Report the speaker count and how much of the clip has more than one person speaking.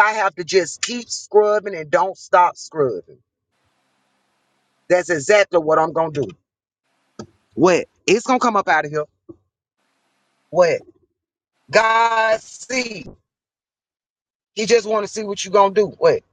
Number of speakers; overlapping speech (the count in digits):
1, no overlap